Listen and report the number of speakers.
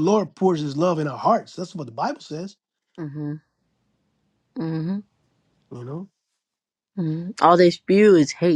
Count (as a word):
two